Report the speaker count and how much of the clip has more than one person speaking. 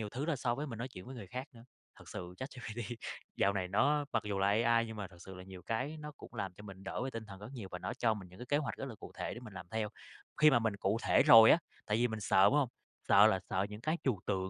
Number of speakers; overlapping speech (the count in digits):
1, no overlap